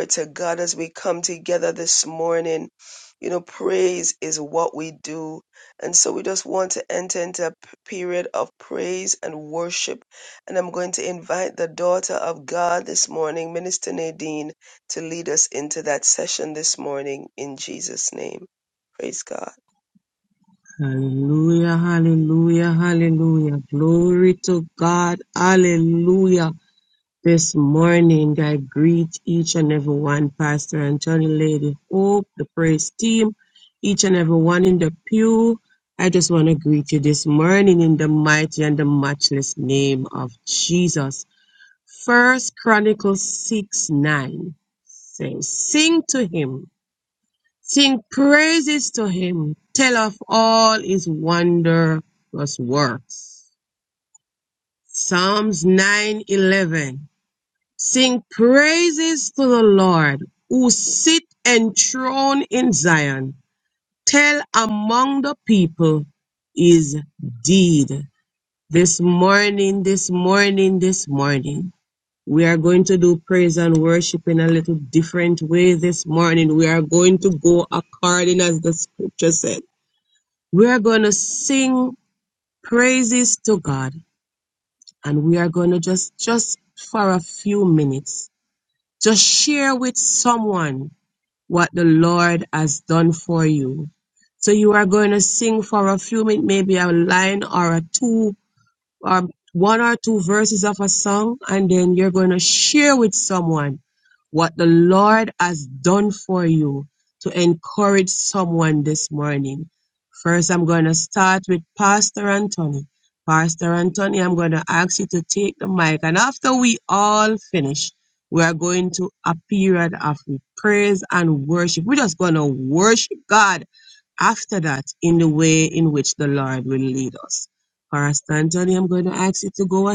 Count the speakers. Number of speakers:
two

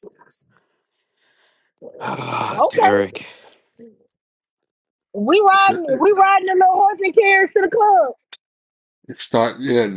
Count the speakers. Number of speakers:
three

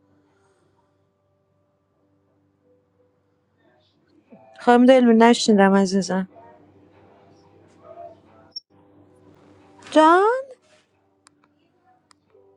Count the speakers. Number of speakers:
one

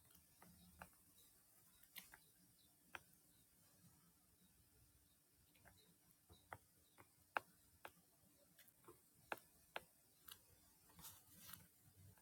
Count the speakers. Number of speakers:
zero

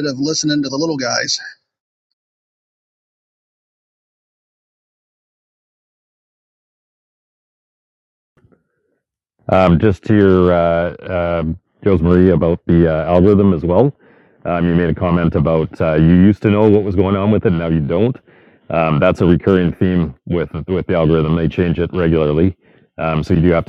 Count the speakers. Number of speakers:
two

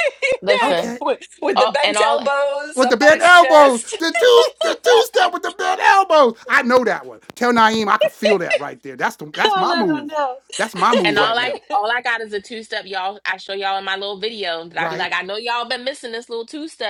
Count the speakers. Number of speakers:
three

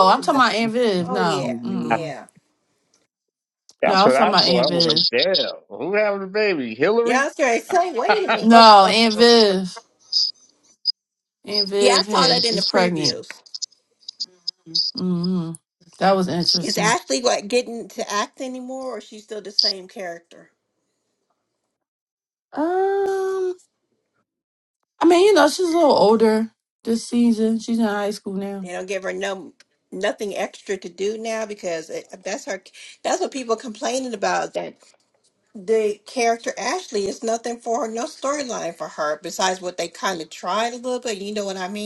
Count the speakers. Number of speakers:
three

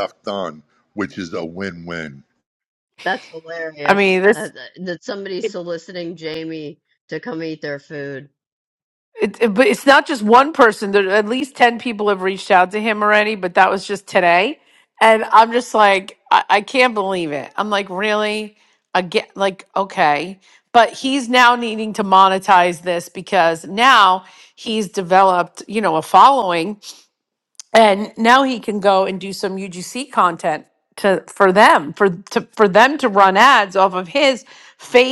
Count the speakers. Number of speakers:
three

